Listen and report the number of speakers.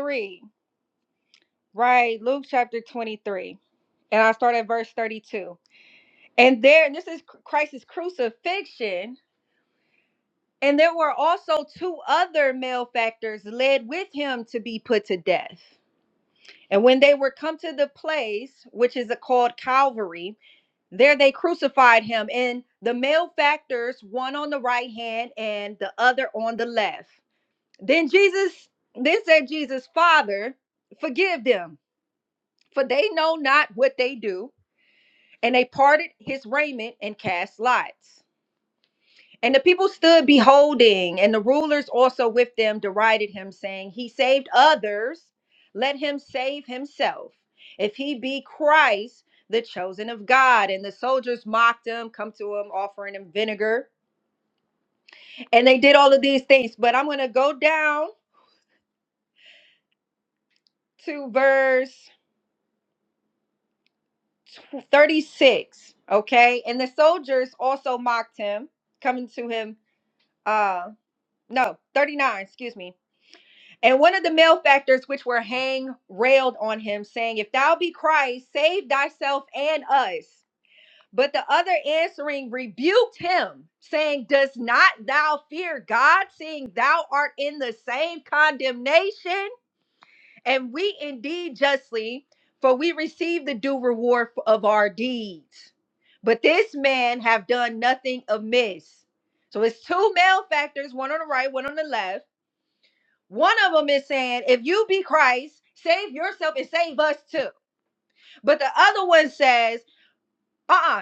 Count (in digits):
1